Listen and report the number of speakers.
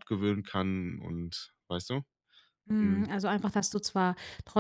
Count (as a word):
two